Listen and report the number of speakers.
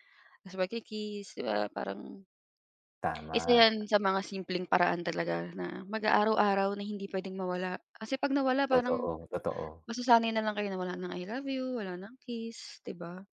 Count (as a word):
two